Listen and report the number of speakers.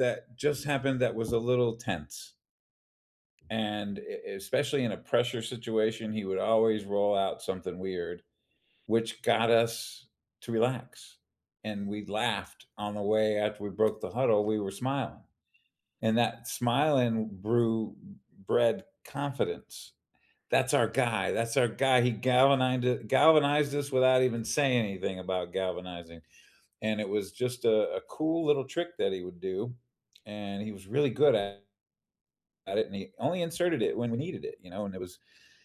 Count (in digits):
1